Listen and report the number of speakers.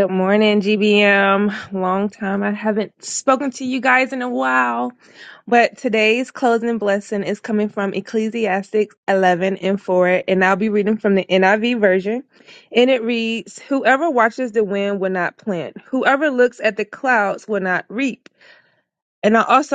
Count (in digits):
1